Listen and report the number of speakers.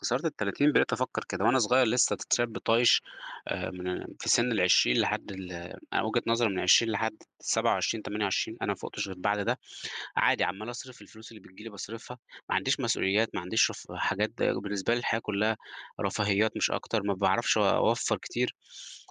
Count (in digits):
1